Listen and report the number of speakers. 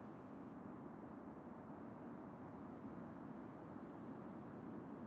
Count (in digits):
0